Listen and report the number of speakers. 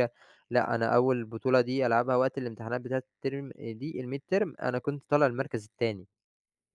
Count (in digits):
1